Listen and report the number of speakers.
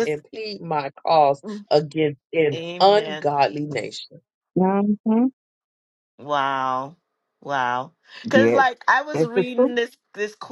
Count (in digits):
3